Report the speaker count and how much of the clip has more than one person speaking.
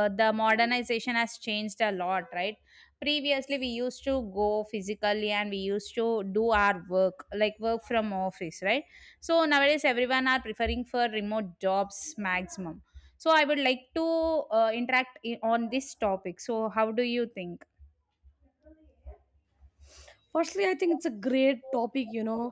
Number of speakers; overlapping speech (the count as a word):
two, no overlap